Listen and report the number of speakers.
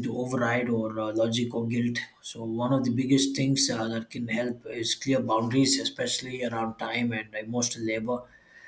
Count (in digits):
1